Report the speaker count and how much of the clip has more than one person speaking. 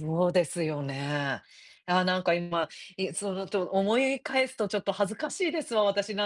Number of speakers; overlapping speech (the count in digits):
1, no overlap